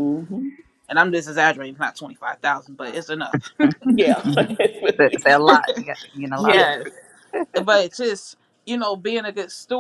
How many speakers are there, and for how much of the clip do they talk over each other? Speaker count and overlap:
3, about 5%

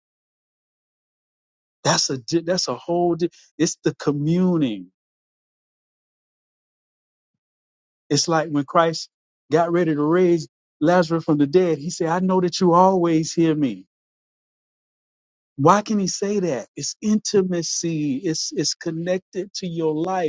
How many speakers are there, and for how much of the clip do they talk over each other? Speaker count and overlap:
1, no overlap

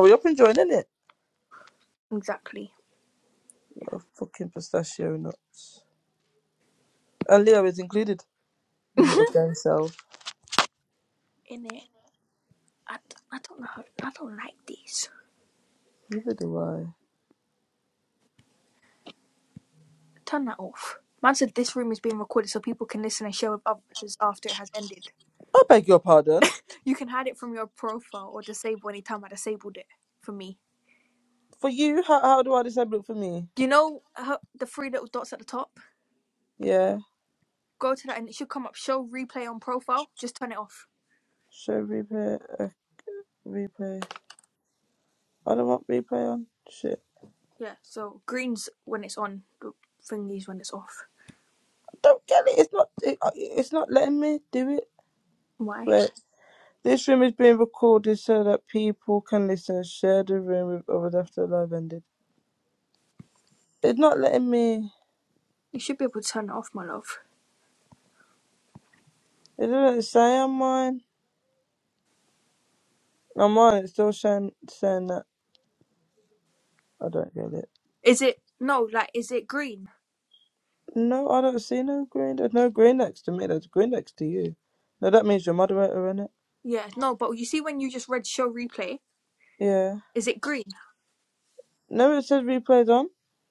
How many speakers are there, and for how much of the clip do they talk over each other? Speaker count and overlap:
2, about 1%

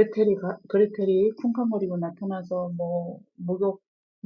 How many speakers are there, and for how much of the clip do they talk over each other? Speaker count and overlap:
1, no overlap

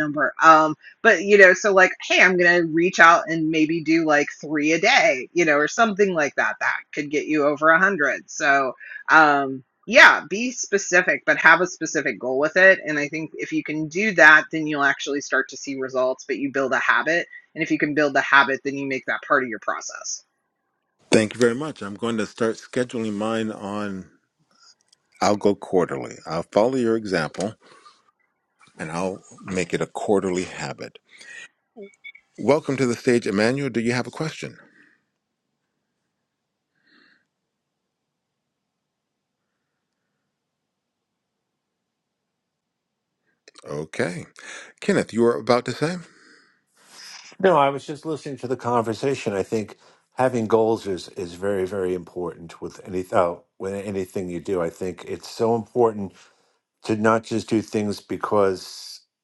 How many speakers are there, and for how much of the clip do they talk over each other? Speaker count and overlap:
3, no overlap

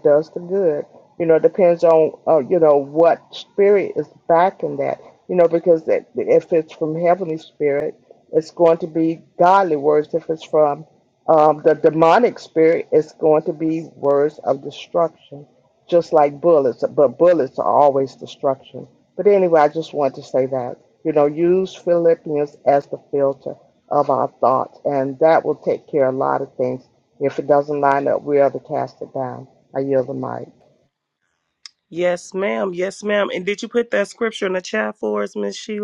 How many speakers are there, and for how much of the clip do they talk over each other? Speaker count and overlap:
2, no overlap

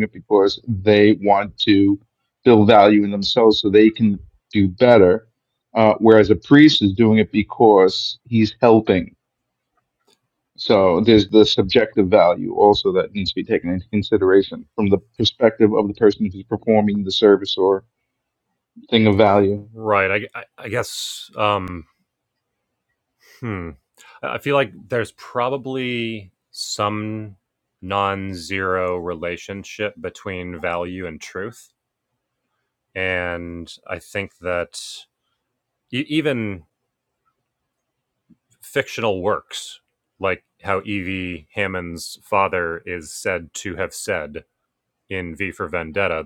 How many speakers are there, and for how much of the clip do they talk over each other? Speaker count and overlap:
2, no overlap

